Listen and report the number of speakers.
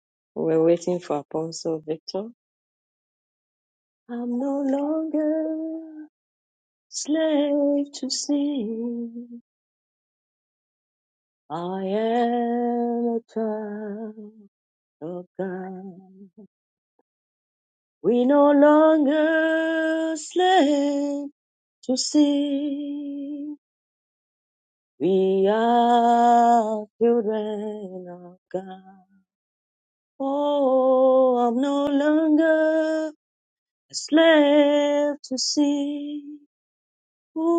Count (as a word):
one